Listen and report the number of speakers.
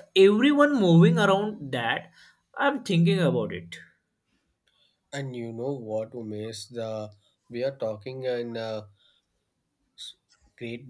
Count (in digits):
2